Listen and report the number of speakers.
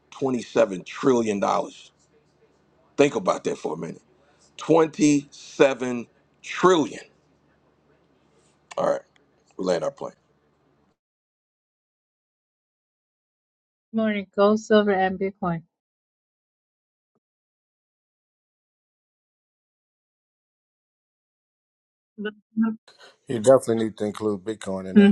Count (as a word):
three